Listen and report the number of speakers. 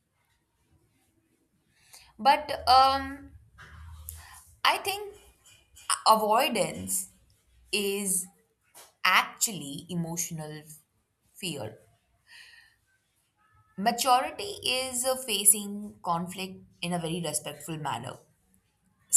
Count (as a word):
one